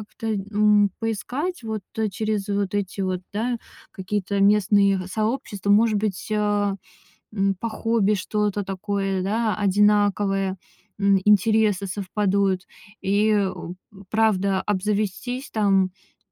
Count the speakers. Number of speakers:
1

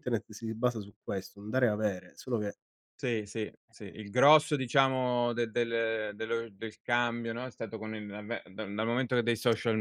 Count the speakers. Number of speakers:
2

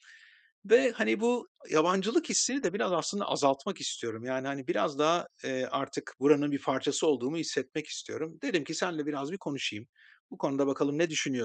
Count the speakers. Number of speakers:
1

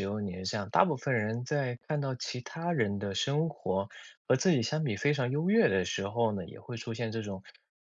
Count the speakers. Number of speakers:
1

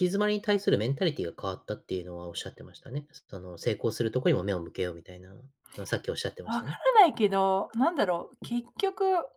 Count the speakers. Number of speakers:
2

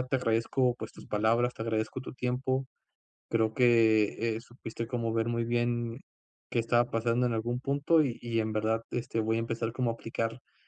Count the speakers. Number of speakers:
1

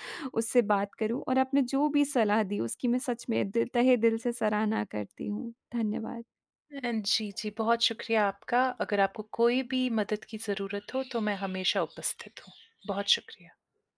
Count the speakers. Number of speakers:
2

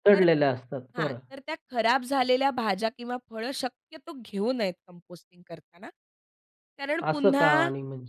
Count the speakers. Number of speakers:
2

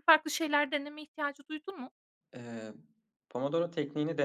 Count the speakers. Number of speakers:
2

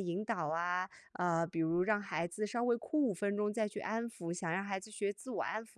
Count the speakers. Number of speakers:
1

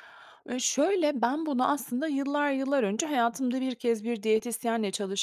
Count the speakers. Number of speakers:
1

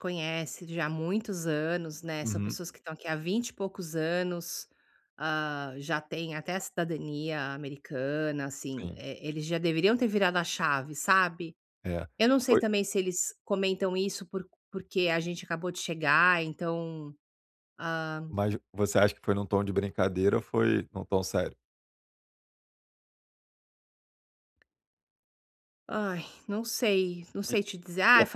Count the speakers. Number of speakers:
2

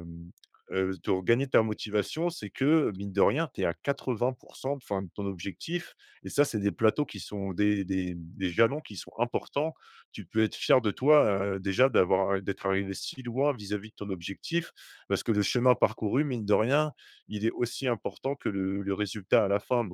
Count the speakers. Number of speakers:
1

